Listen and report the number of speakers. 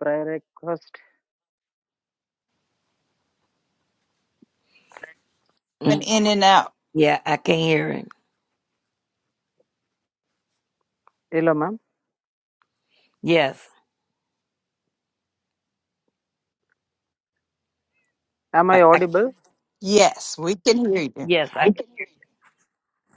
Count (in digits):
3